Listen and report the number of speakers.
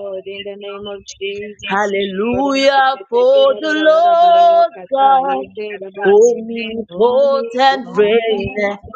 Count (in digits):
2